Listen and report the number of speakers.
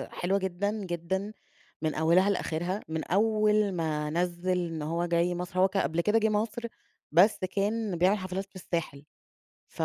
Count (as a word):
one